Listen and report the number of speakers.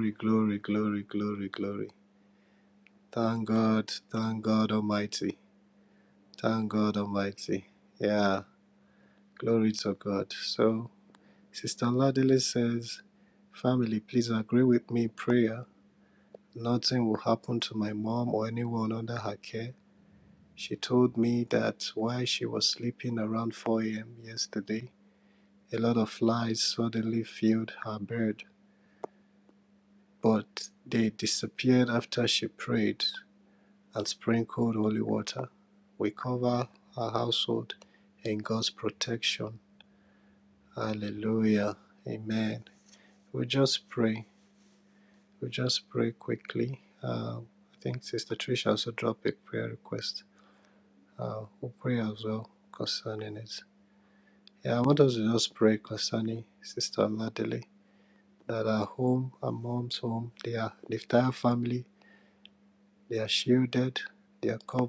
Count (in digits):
1